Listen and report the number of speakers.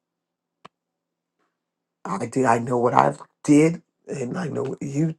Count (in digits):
1